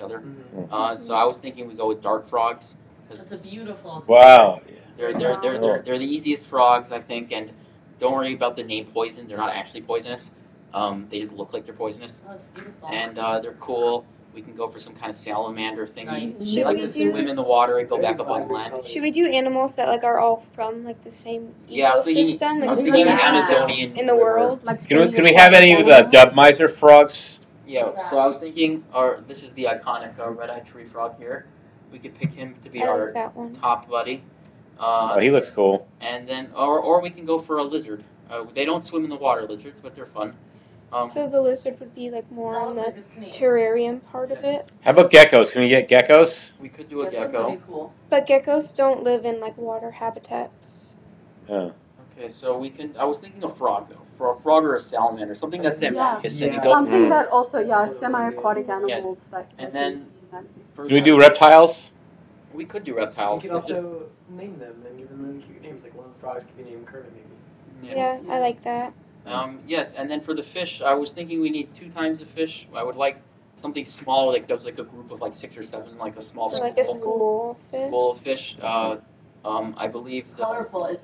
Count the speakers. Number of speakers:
6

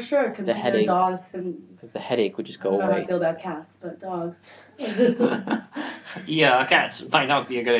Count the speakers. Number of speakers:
3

